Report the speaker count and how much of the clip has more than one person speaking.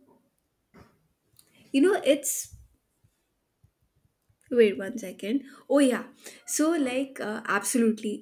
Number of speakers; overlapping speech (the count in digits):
1, no overlap